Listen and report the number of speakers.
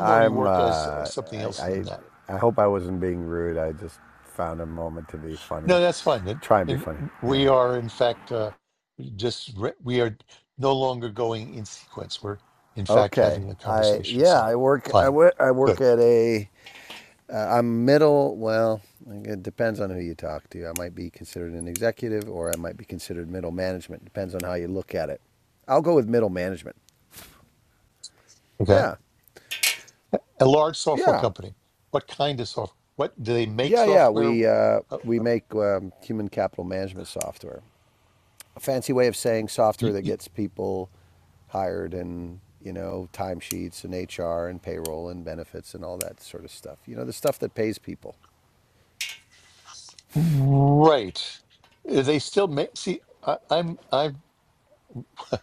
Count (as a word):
two